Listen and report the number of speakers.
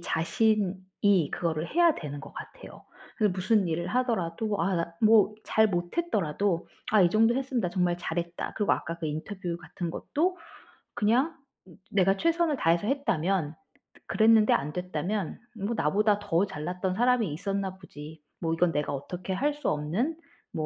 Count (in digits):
1